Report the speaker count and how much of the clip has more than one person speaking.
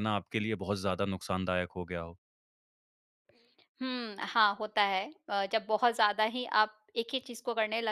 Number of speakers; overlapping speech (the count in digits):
2, no overlap